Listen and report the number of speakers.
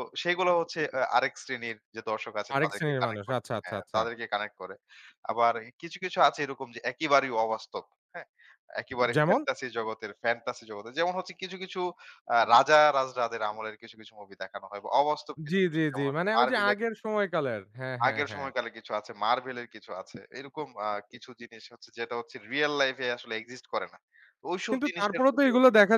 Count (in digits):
2